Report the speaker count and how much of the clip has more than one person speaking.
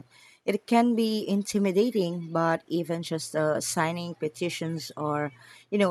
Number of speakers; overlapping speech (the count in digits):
1, no overlap